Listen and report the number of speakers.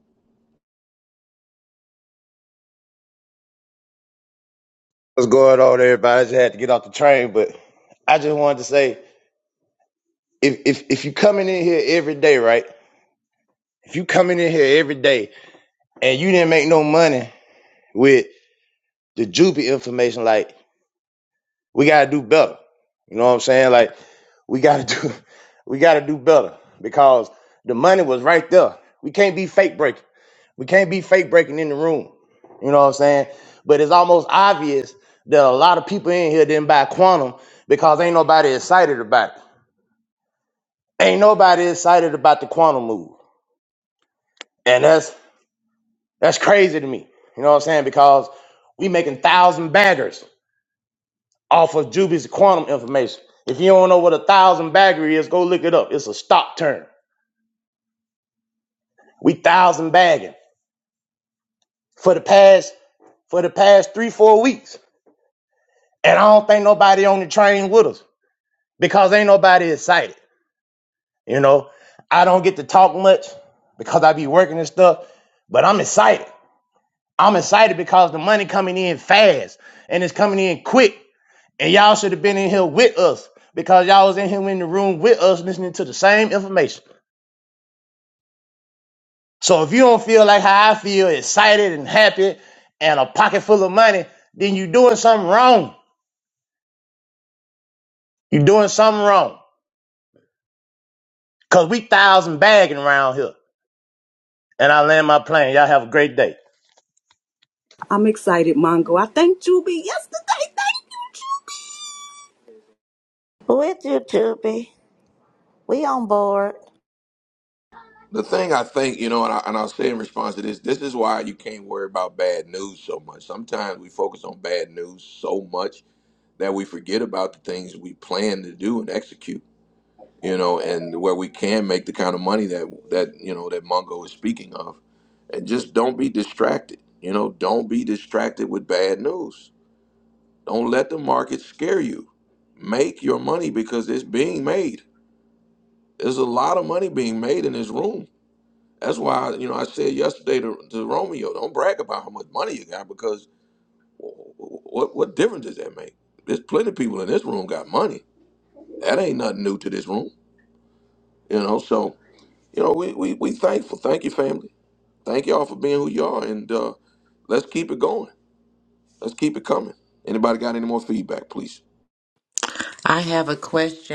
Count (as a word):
five